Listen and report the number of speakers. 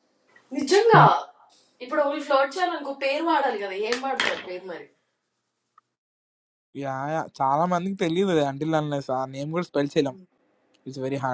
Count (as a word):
two